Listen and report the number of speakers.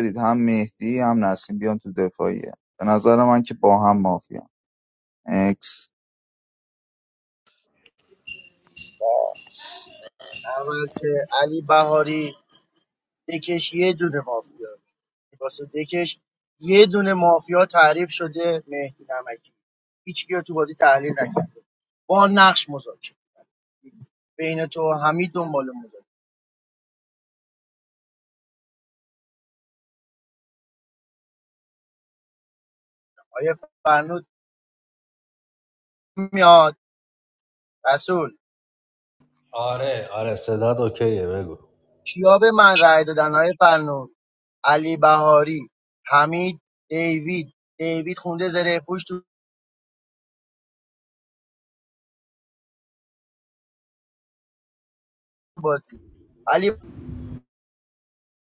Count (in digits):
3